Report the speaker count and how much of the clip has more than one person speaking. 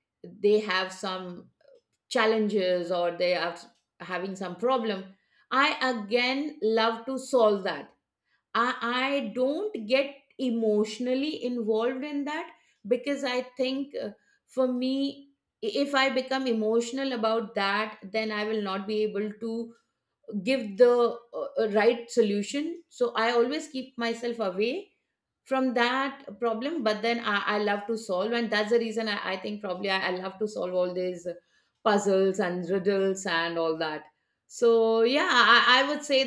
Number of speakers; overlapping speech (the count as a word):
one, no overlap